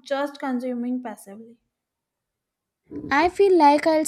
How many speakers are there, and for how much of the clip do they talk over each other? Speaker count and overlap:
2, no overlap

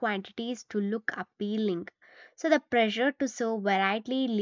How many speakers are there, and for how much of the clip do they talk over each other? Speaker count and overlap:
1, no overlap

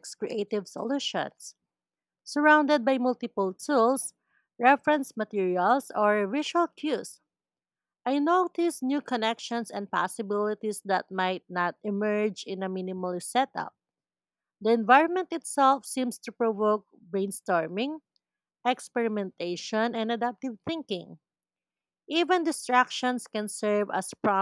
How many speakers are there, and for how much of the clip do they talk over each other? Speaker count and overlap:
1, no overlap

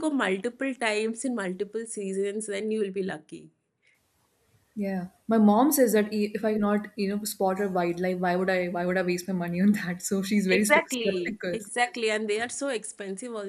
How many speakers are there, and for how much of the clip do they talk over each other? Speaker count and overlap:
2, about 8%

